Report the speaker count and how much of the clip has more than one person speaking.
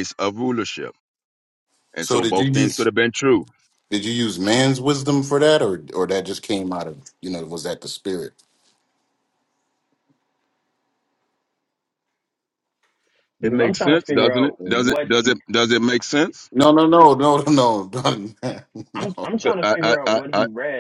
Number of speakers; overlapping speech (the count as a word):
three, about 19%